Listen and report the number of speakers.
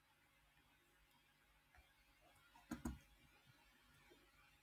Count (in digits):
0